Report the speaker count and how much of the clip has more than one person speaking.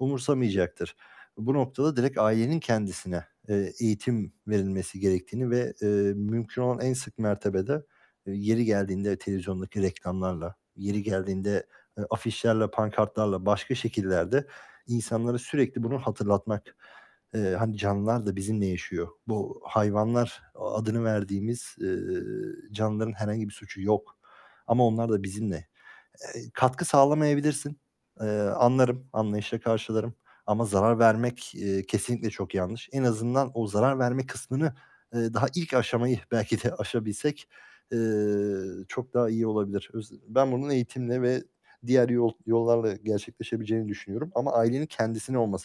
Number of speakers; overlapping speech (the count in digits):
1, no overlap